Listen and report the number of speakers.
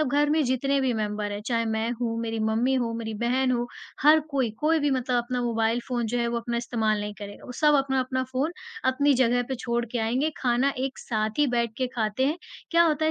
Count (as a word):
one